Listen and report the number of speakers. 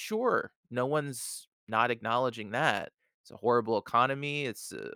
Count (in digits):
1